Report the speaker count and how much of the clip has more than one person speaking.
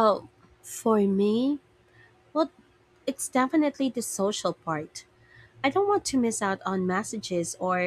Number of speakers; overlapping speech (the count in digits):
1, no overlap